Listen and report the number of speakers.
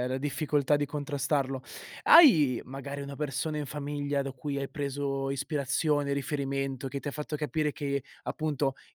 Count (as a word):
one